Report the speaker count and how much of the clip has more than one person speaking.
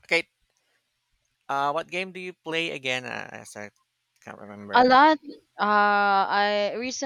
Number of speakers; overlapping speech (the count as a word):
two, about 2%